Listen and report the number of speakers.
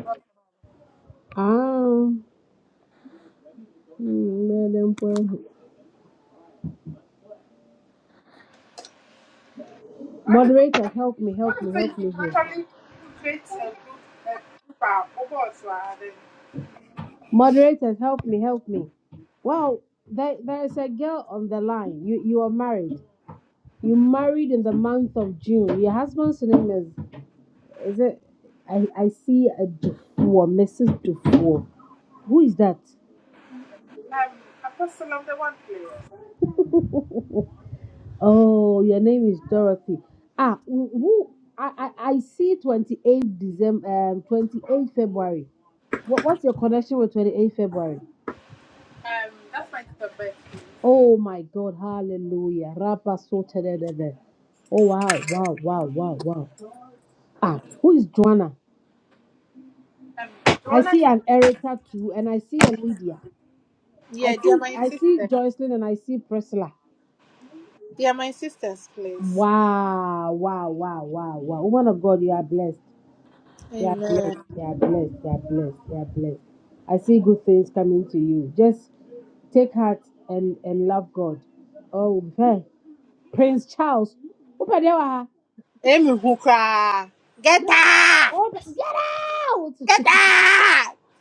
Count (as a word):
two